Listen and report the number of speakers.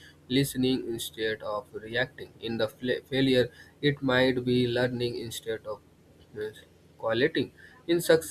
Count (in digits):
1